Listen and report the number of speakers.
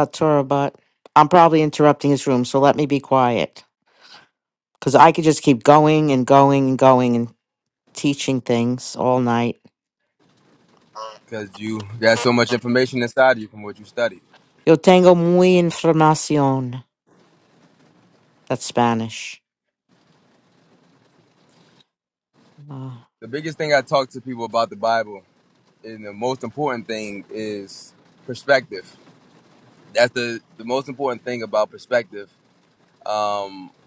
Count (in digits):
2